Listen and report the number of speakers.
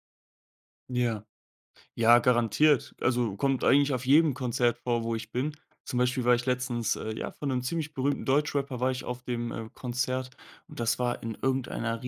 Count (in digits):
1